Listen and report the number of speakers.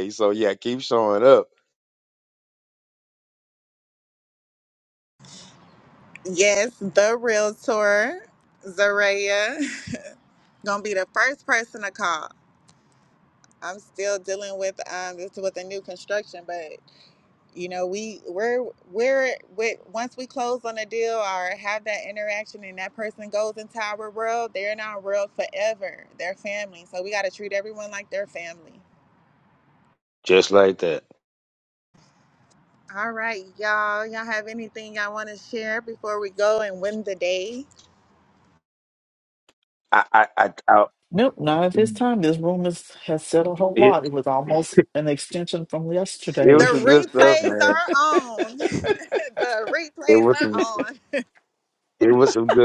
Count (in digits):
3